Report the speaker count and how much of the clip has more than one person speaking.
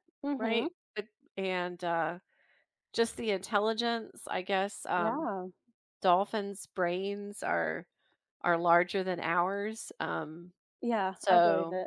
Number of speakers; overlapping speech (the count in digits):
2, about 9%